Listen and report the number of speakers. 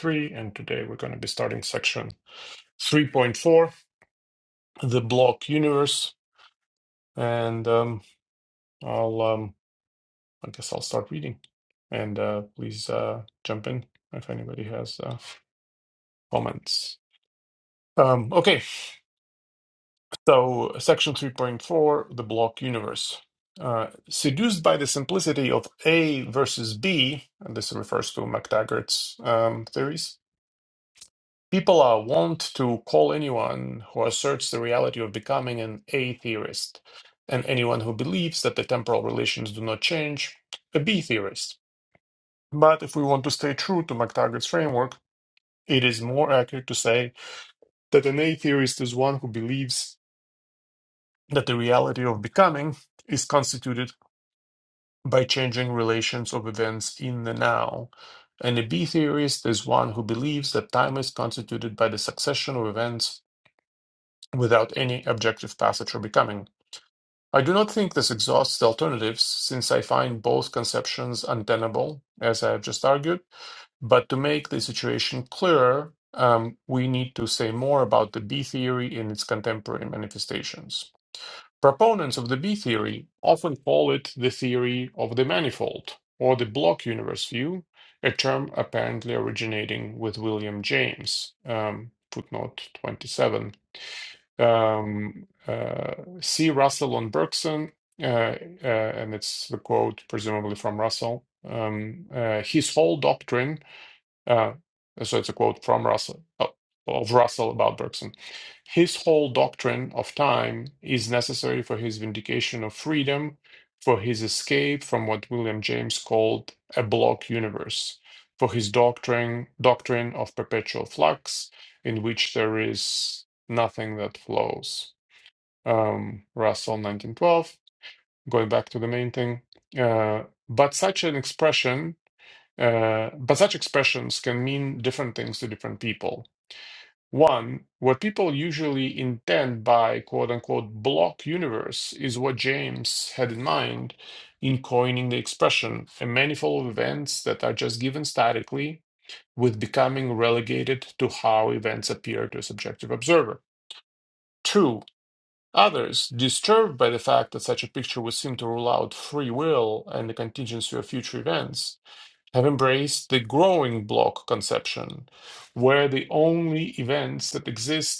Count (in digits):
1